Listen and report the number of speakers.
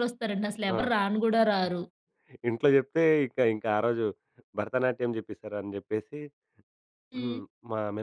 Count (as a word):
two